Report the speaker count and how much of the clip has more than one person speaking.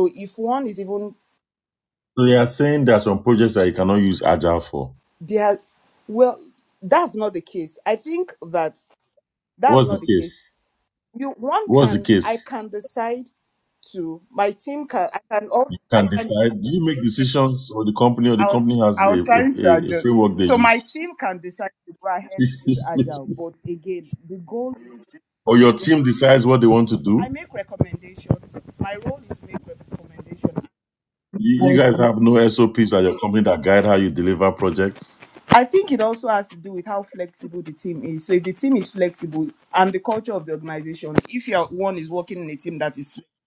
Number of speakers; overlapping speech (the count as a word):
two, about 10%